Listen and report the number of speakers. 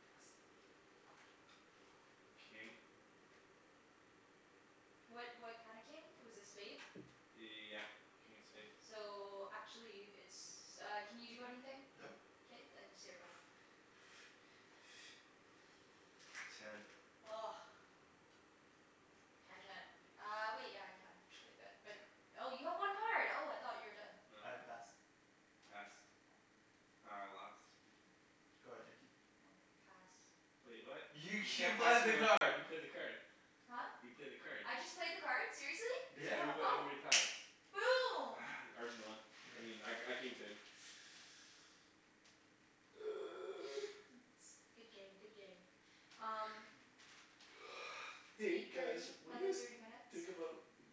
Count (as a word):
three